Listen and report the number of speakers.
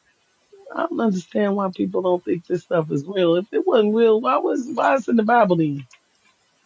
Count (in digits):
1